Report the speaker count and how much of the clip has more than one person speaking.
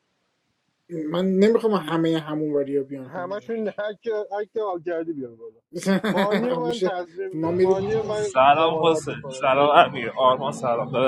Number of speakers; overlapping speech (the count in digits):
3, about 31%